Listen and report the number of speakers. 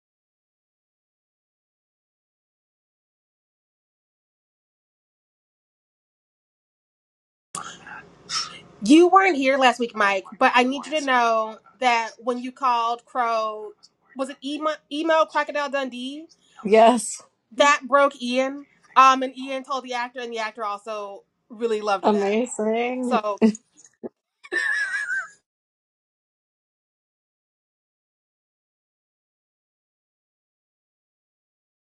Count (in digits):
2